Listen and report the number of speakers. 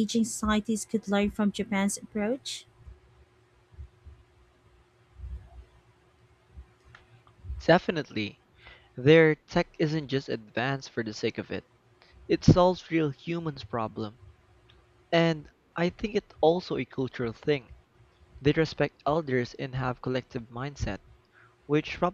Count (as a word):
two